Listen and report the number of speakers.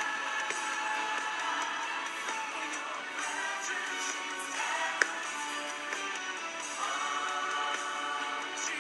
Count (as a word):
zero